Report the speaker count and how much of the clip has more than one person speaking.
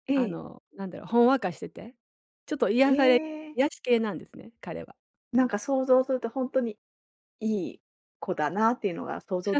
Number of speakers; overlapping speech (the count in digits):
2, about 5%